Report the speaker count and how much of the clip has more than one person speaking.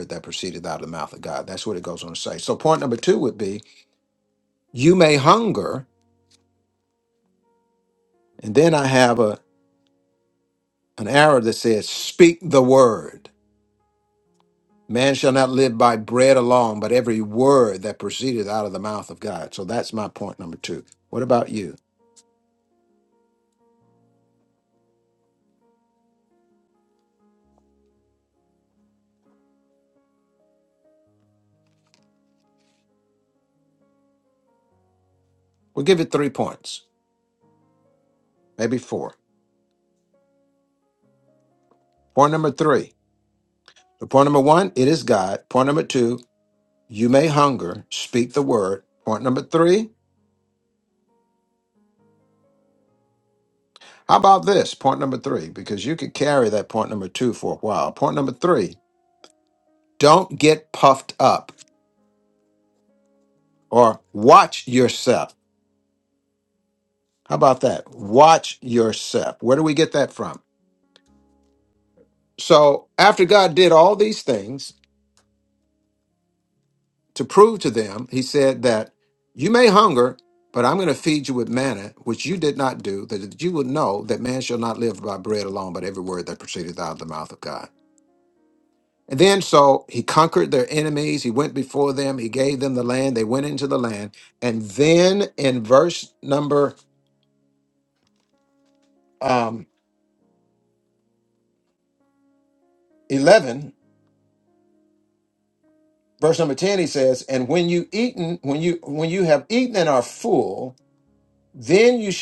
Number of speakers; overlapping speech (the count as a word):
one, no overlap